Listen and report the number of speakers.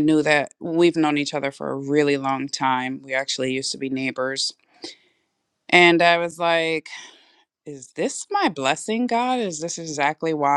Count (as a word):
one